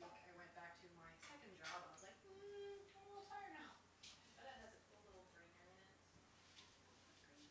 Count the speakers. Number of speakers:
2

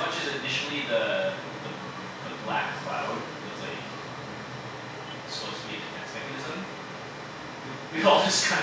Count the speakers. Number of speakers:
1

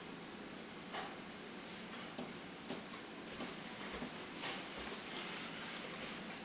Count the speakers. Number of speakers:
0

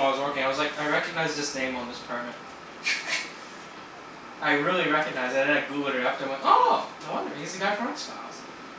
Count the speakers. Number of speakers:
1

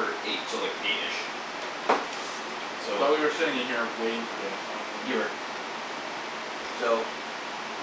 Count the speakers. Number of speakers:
2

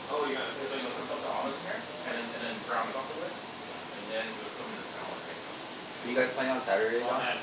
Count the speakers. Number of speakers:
3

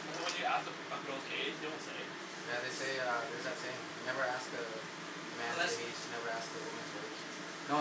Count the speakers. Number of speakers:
2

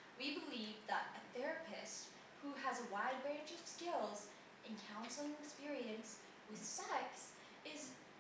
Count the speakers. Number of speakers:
1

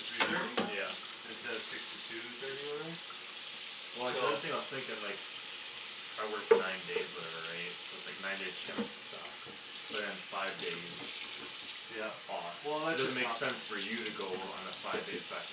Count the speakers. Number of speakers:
2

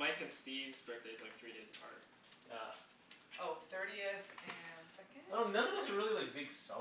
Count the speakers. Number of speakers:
3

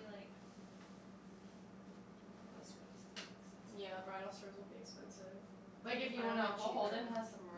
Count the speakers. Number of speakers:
2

